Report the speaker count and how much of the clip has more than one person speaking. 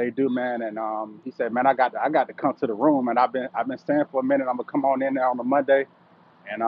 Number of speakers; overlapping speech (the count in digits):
1, no overlap